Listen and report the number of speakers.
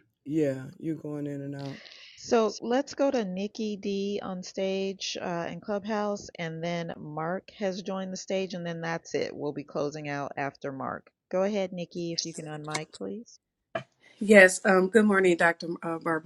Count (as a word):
three